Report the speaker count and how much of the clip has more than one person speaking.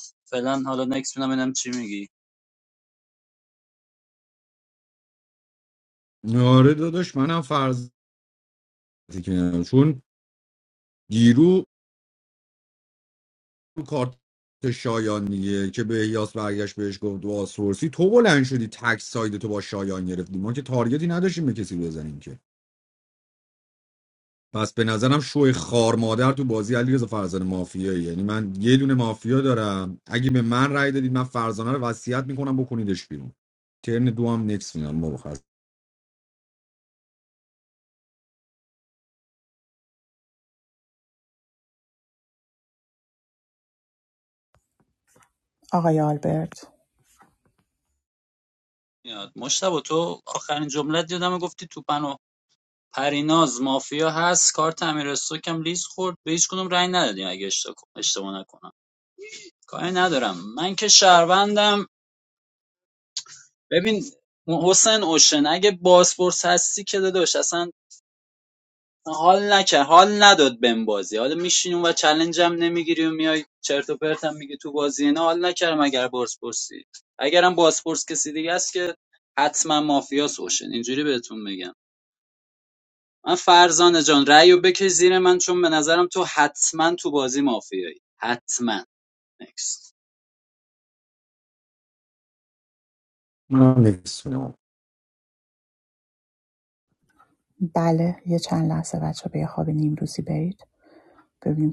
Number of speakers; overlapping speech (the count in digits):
3, no overlap